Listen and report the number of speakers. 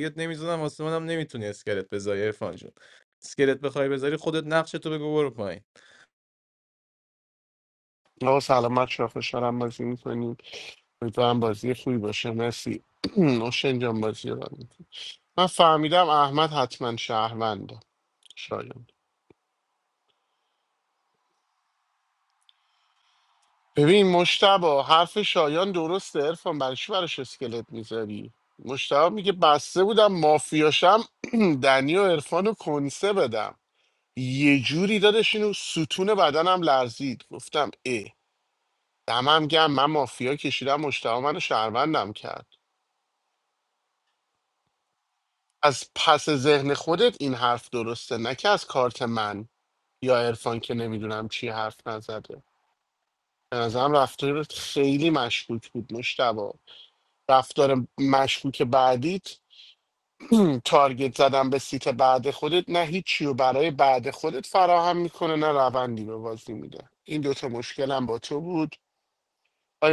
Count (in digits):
2